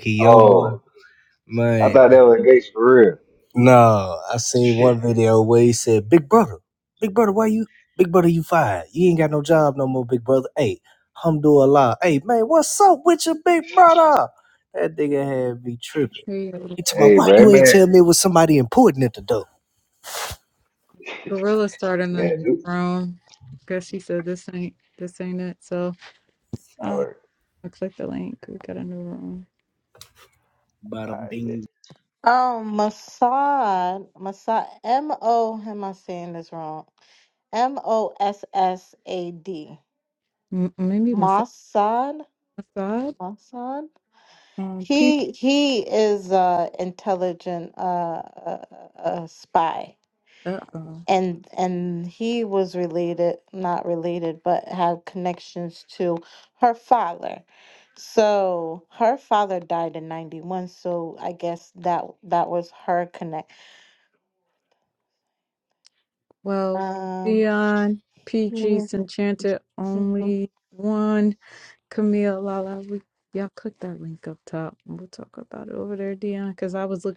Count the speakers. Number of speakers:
4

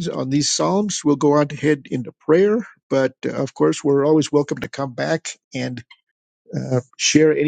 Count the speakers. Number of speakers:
1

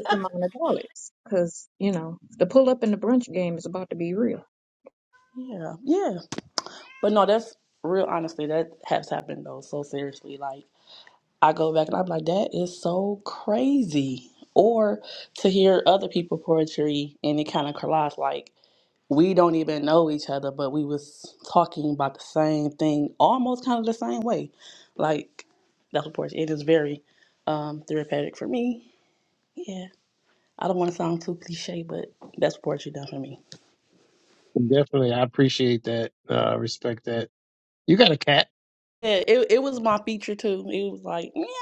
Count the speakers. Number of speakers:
3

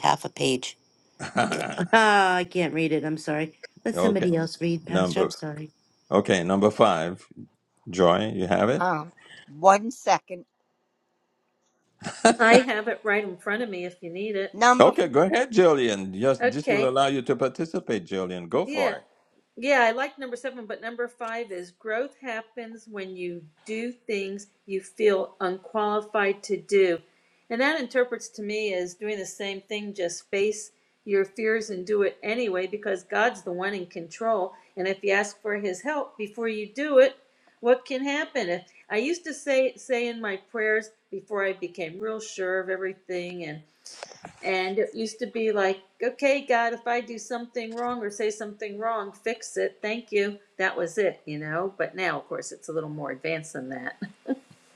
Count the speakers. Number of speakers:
4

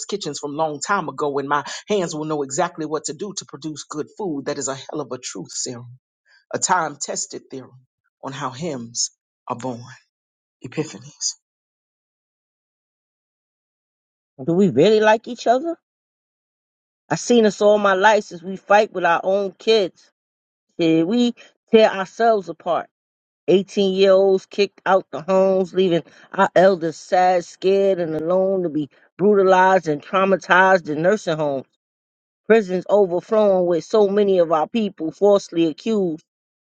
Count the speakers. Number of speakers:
2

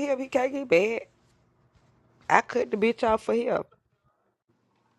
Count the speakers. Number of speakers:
1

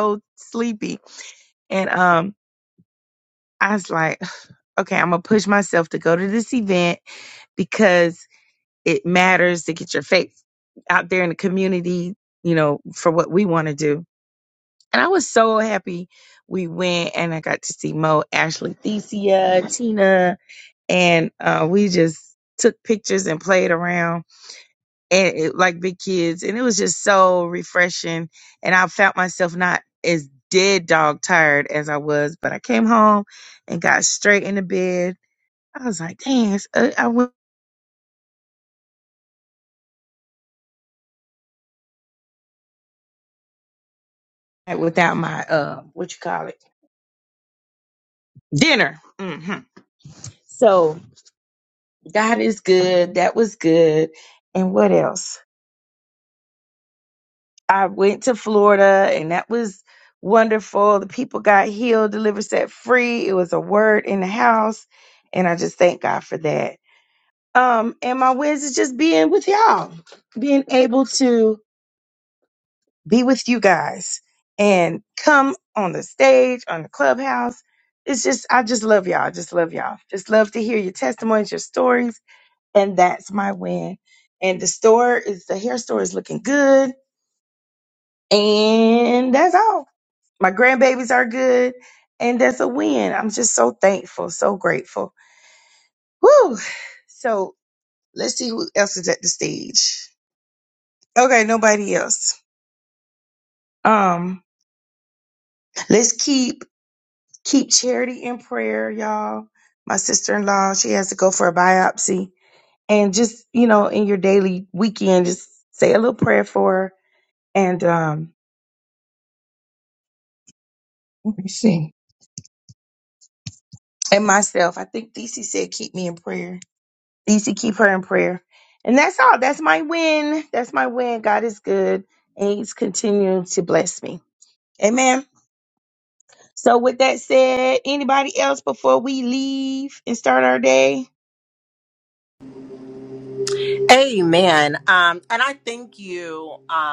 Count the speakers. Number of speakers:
2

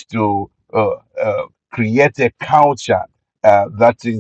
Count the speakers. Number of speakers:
1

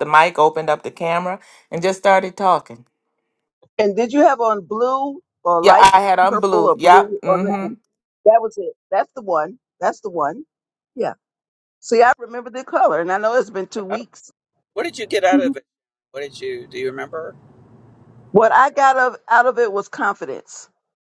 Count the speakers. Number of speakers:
3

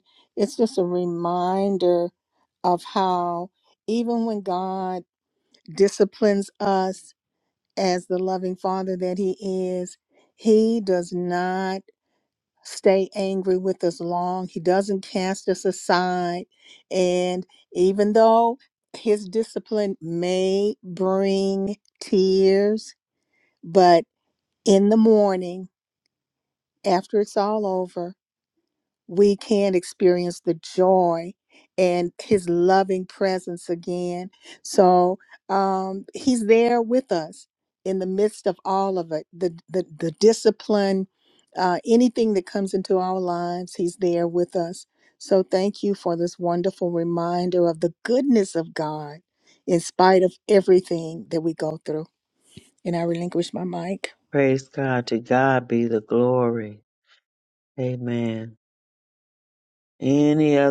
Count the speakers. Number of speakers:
2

